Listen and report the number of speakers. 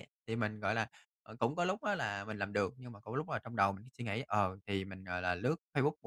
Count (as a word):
one